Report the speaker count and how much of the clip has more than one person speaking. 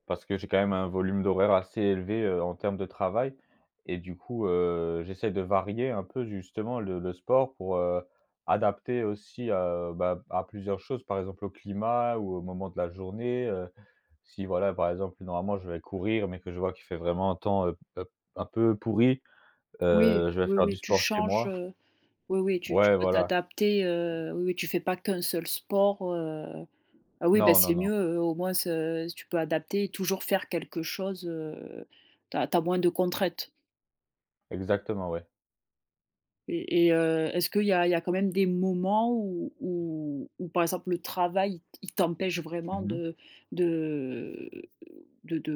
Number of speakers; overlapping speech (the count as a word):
two, about 7%